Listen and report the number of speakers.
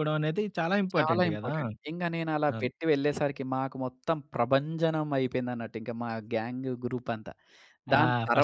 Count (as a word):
two